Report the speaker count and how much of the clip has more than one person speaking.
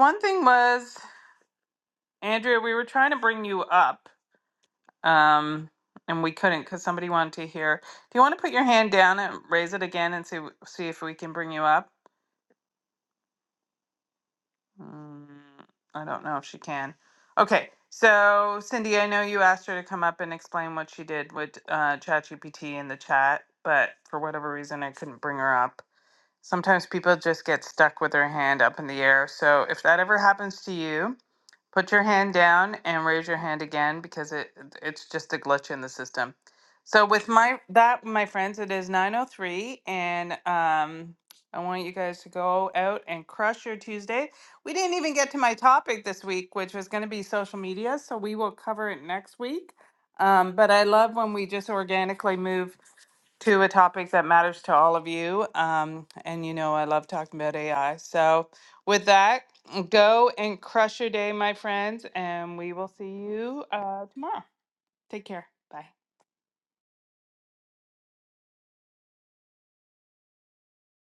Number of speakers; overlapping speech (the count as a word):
one, no overlap